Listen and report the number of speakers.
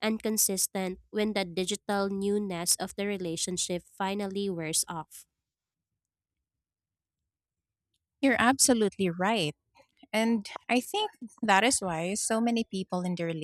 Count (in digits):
2